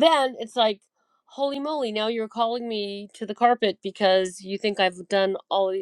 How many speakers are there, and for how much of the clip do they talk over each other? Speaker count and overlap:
1, no overlap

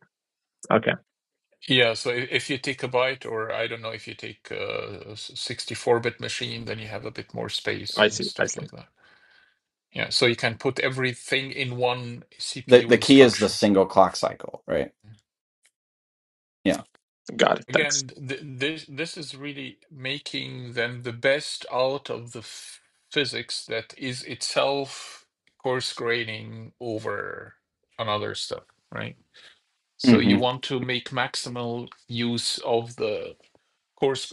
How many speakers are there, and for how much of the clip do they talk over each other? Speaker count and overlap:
3, about 6%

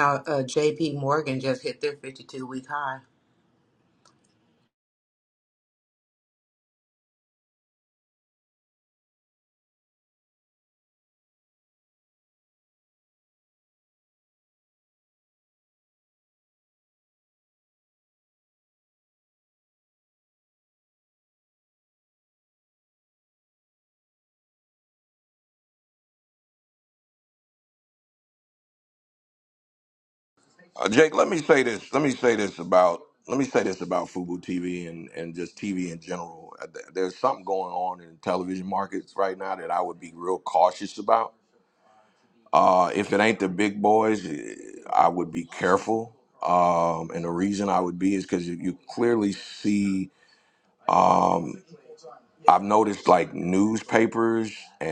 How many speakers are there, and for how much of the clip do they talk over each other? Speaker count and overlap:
2, no overlap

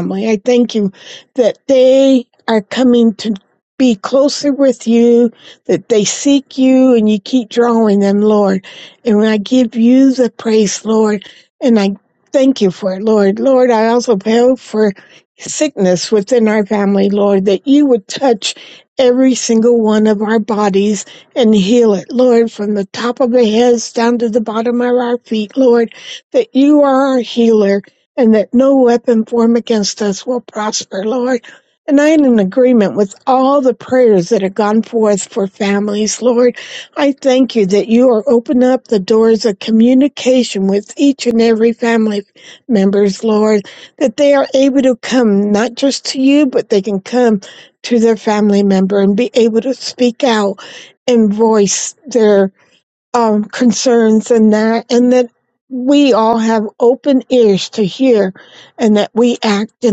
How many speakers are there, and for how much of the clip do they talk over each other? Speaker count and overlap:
1, no overlap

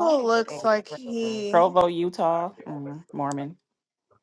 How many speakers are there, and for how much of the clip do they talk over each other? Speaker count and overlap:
2, about 9%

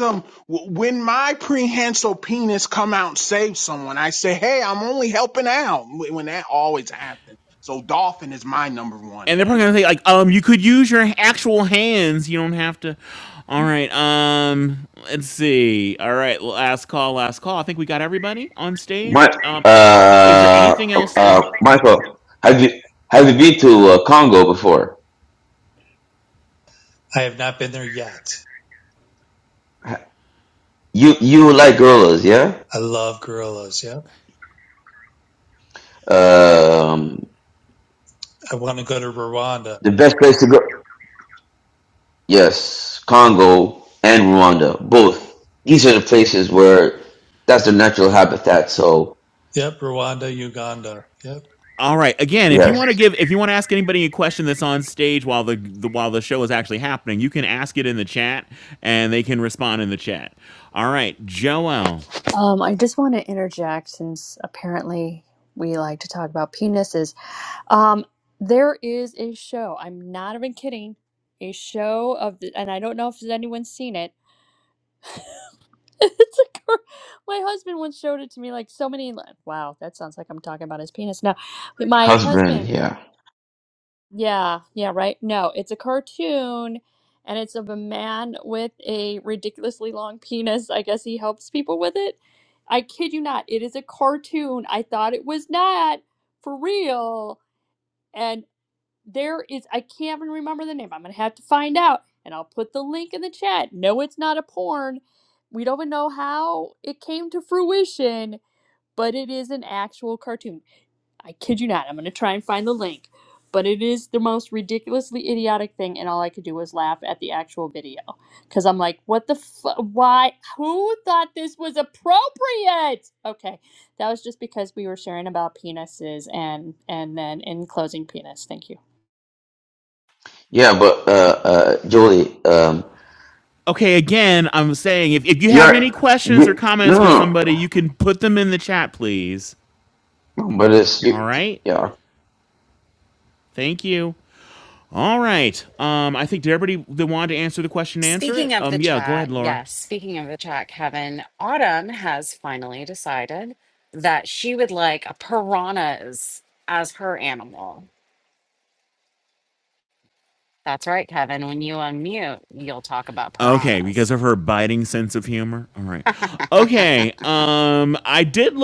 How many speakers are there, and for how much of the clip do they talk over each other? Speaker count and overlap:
6, about 4%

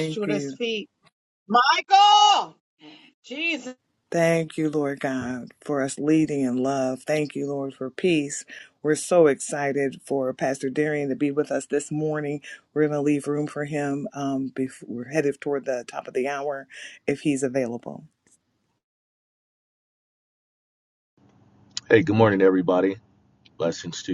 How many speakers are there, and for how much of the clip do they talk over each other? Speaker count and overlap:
3, about 2%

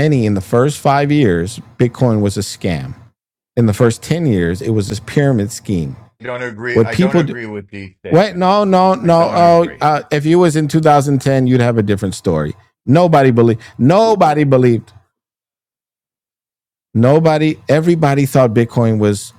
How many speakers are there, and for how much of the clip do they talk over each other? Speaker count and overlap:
2, about 9%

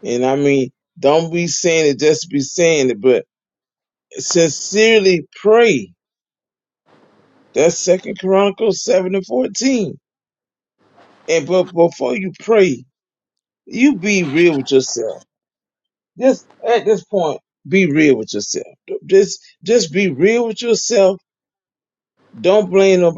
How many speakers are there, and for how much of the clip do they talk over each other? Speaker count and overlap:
1, no overlap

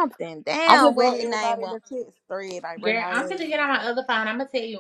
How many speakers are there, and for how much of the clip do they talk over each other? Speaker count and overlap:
3, about 35%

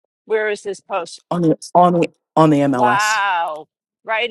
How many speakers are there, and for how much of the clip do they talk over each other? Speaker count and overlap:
2, about 11%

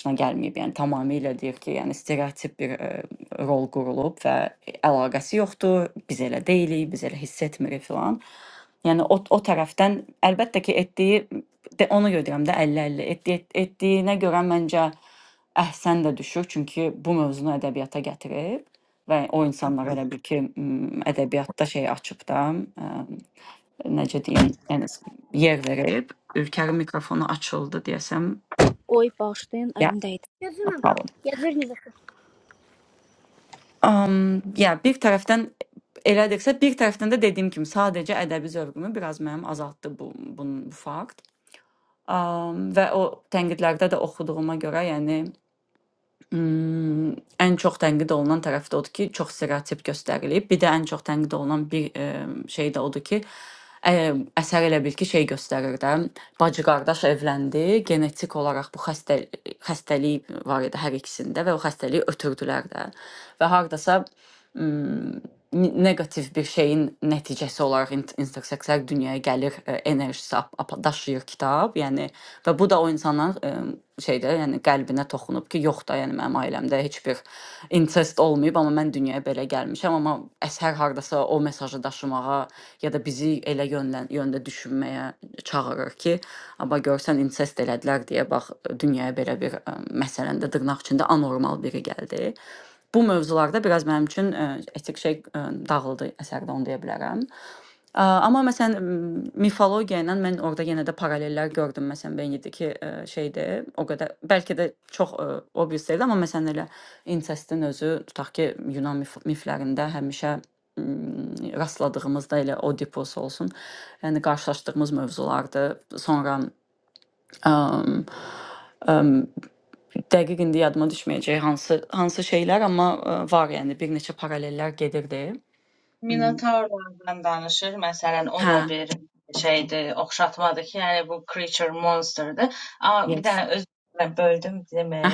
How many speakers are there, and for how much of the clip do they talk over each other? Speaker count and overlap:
3, about 1%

